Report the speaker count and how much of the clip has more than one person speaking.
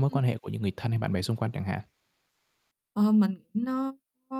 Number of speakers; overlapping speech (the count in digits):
2, about 2%